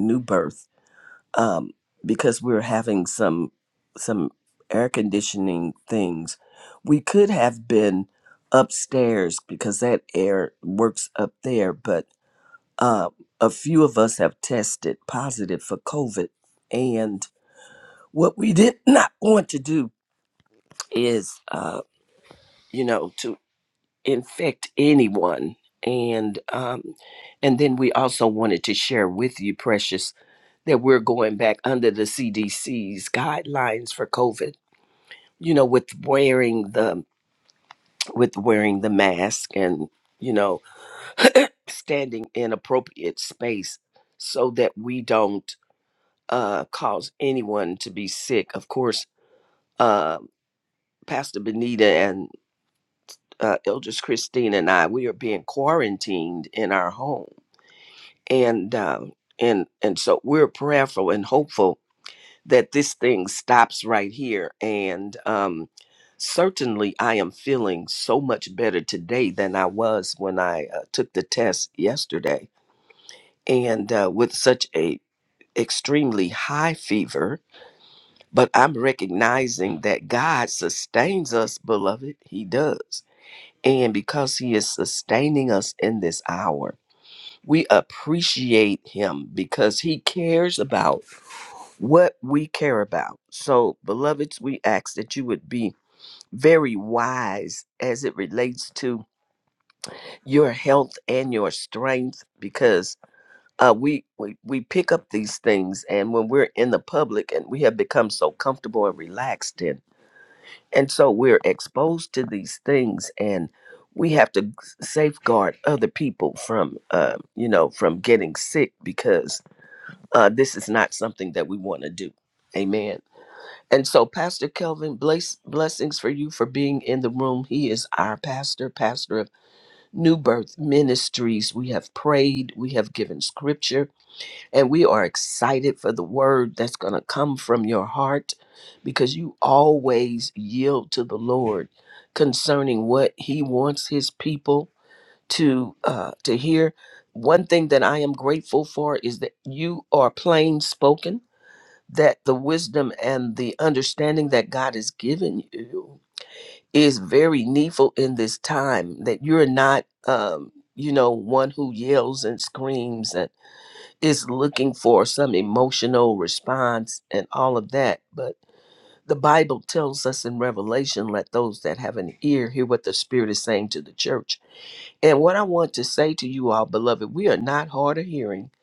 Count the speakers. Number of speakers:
1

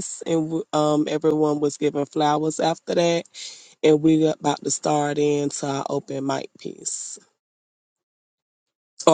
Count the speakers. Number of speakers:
1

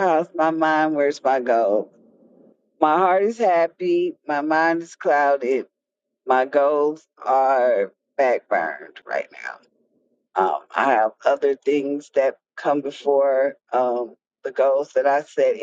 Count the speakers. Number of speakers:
1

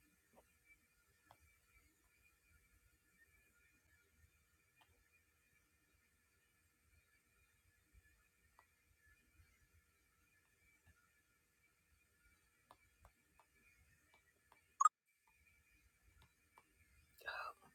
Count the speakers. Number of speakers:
0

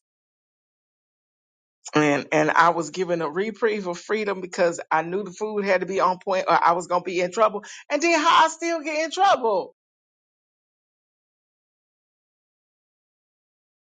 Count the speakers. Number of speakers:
1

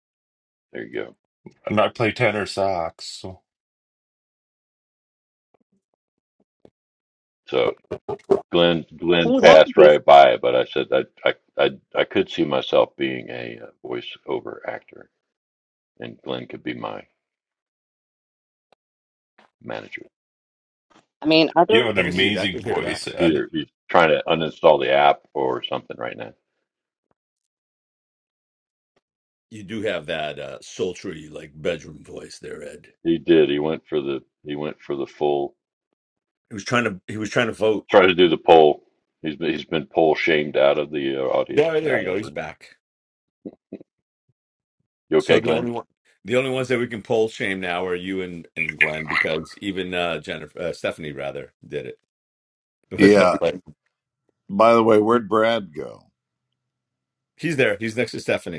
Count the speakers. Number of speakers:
5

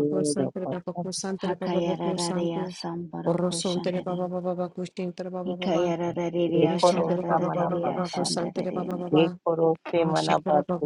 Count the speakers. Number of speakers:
3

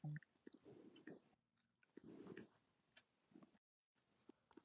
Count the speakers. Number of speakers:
0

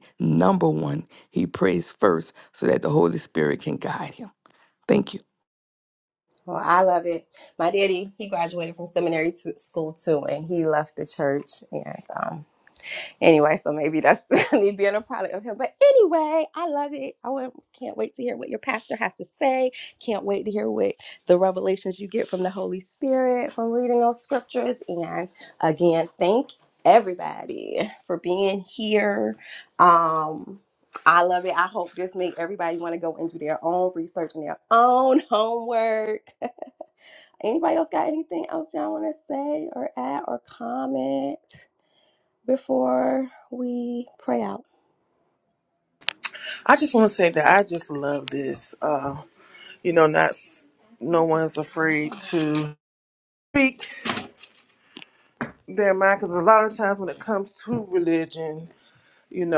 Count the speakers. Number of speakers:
3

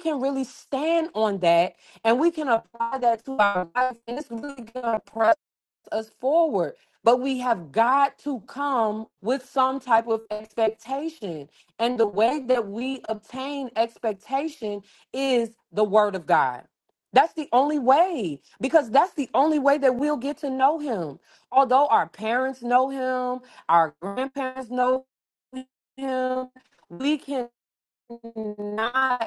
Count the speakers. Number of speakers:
1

